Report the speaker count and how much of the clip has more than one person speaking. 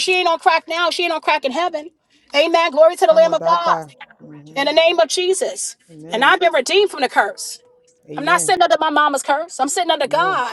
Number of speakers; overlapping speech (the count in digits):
2, about 17%